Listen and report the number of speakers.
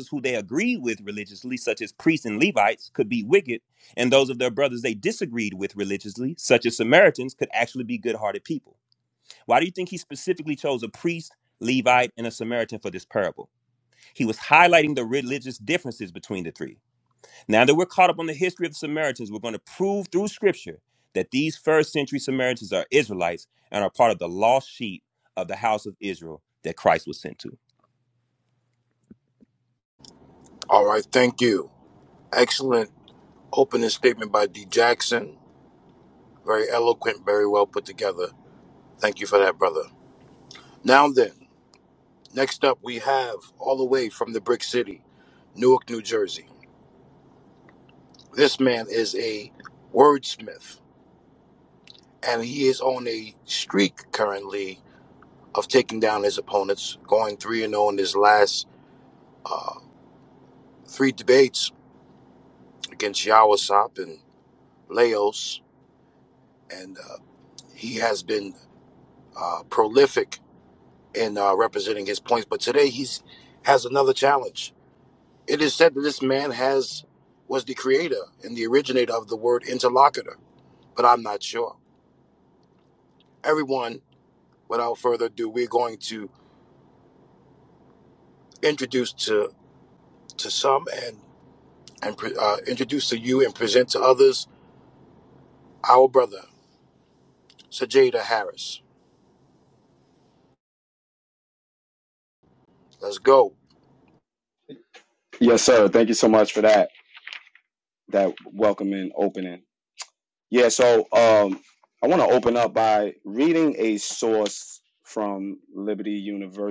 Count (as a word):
three